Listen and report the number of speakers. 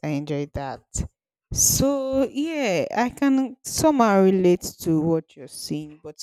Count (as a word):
one